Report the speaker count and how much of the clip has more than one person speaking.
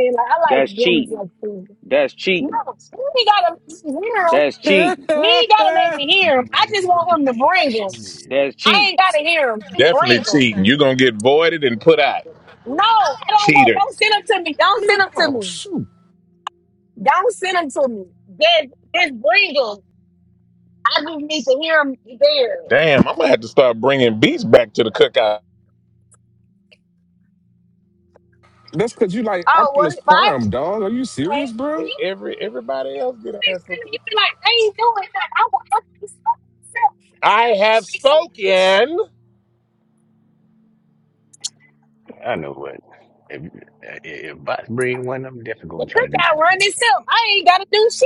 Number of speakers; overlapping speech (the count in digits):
5, about 20%